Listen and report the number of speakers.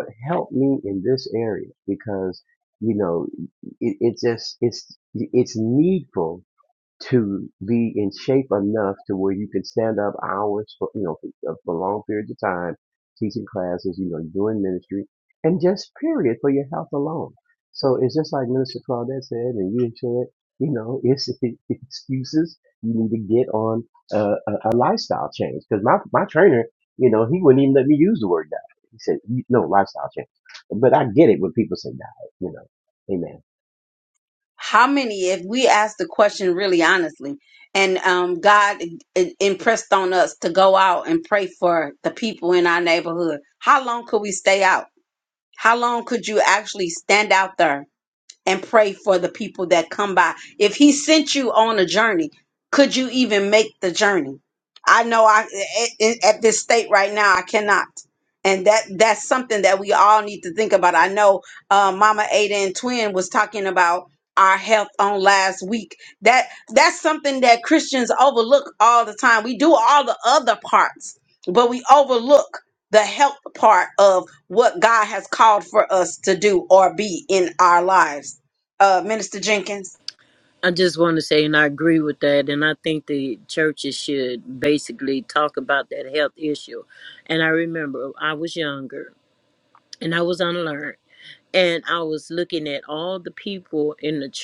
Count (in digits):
3